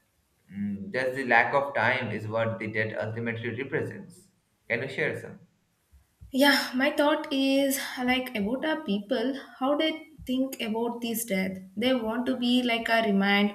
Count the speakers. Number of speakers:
2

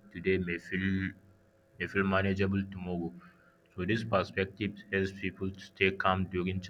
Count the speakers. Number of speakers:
1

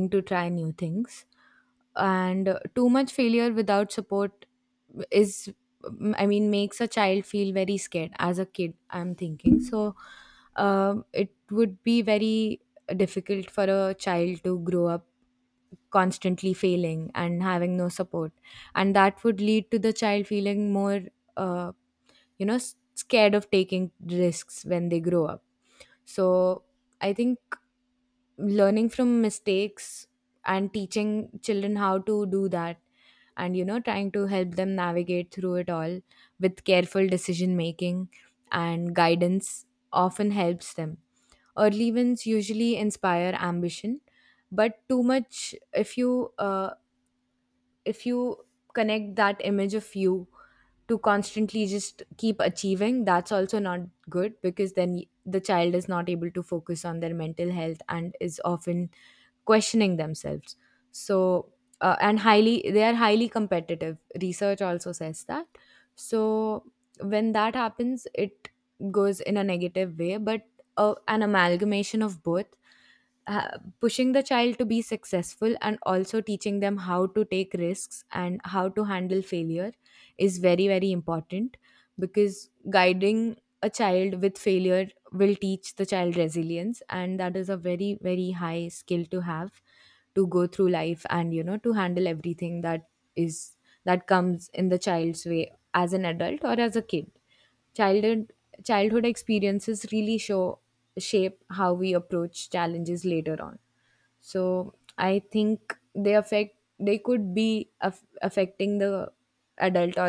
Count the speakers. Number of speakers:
1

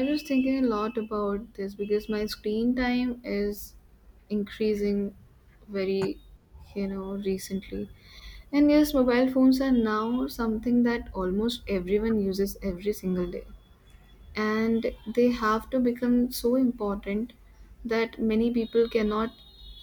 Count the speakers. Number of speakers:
1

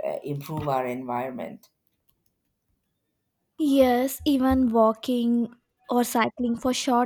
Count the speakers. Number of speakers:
2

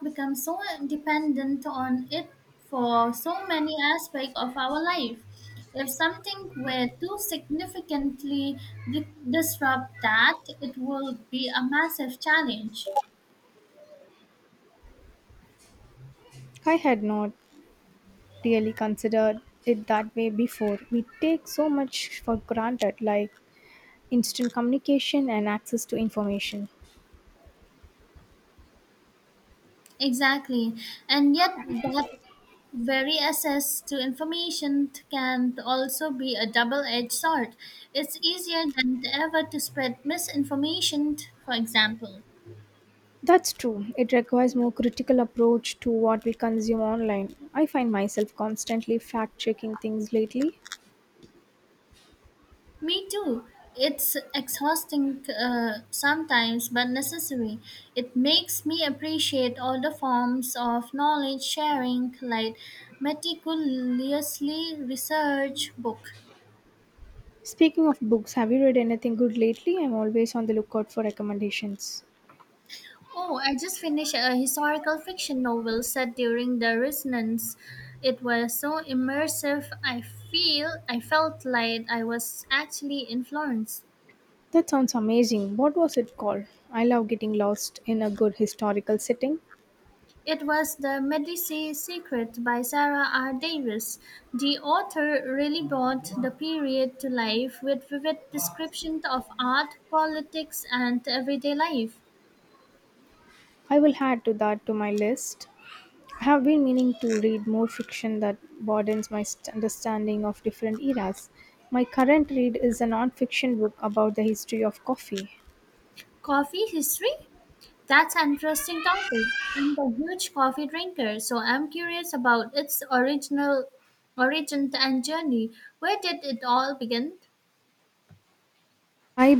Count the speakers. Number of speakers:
2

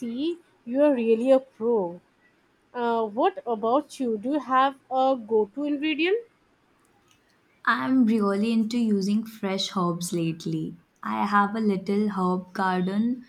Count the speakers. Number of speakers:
2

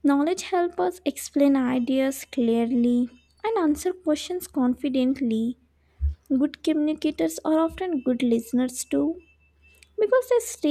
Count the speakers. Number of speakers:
1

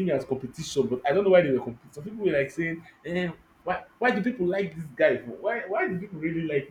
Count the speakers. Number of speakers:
1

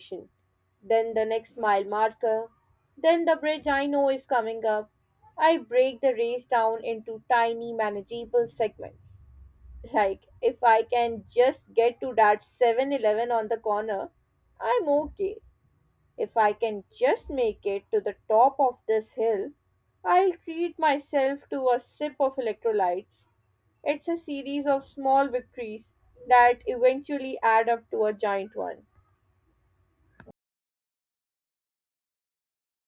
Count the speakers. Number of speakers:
1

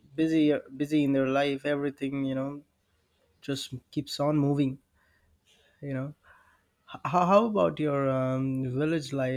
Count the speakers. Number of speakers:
1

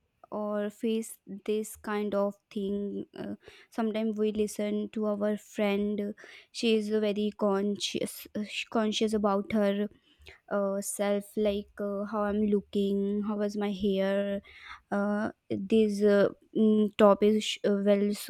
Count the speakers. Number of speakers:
1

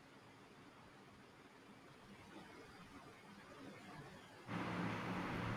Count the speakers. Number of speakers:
0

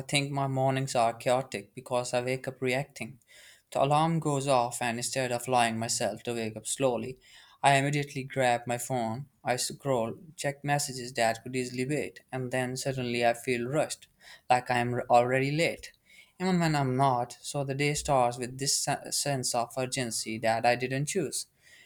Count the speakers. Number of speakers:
1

